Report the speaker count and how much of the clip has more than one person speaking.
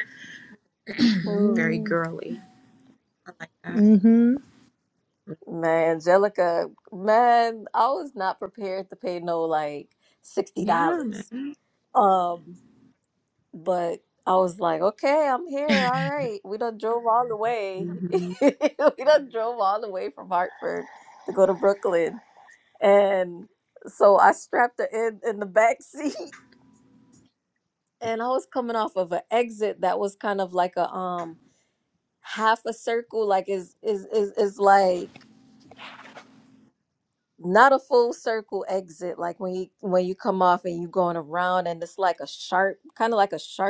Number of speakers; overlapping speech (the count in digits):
3, about 2%